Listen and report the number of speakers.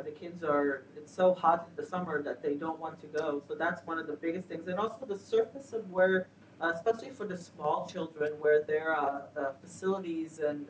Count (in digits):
1